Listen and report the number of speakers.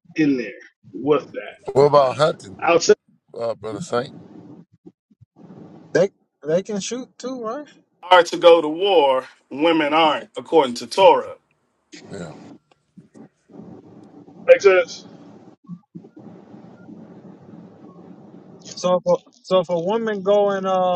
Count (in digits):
3